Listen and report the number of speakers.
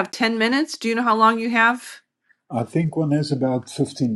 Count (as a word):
two